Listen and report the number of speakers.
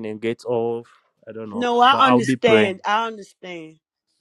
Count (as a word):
two